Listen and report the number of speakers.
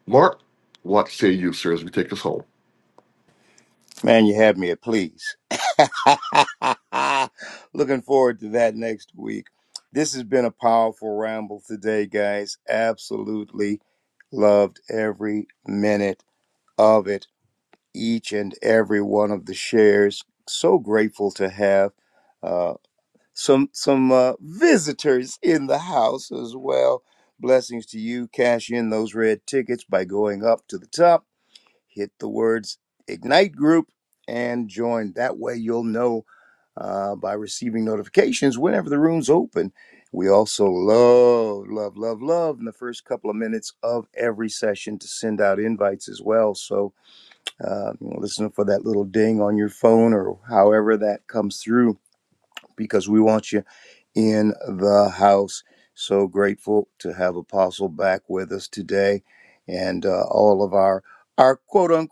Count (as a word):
two